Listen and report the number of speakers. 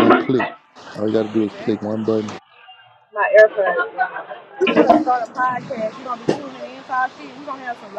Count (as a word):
three